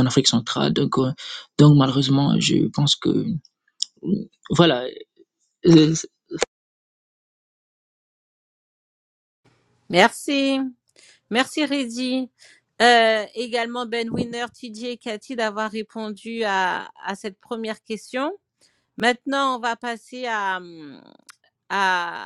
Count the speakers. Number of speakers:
2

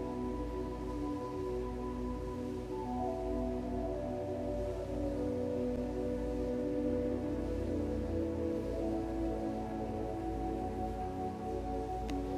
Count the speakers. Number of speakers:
0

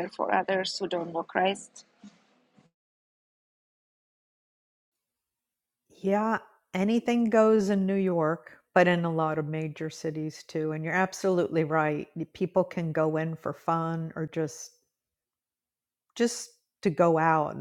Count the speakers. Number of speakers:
2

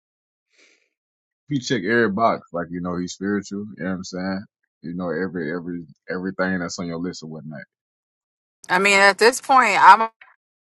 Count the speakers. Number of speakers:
2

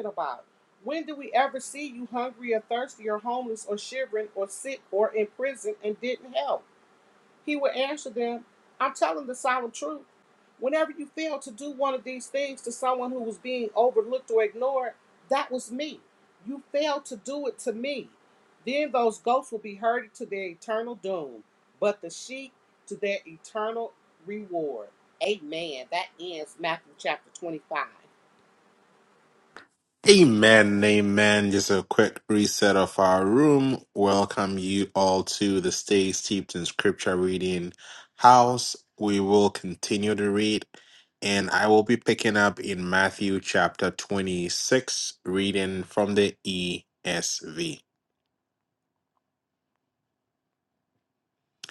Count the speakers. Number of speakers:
2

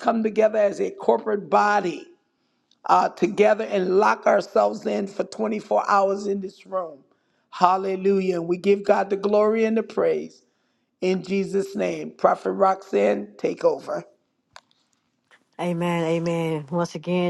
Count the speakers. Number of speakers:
2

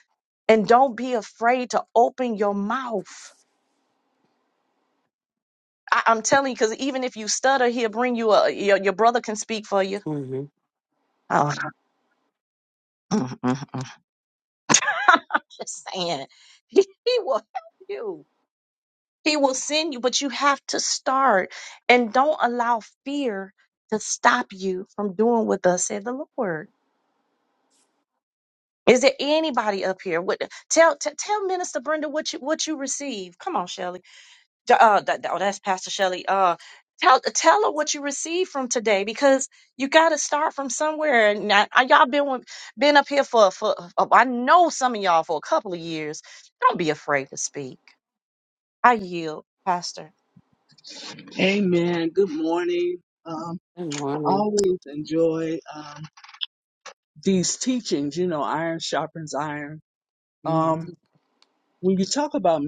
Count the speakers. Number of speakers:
3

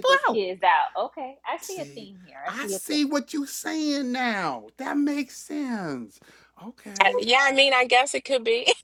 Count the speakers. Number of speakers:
3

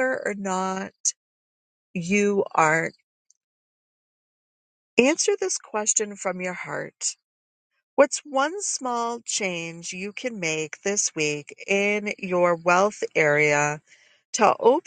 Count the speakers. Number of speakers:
1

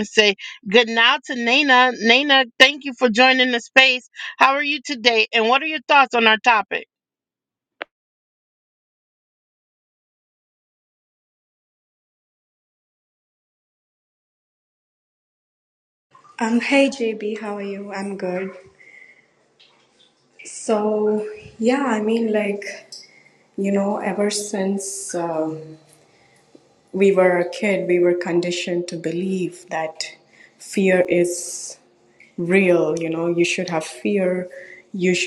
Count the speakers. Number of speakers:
2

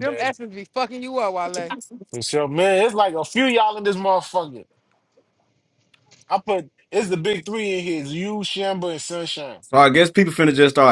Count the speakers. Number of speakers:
3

